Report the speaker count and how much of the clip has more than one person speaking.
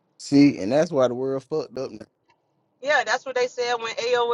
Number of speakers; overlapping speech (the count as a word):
two, no overlap